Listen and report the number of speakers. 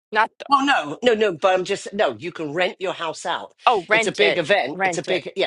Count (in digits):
2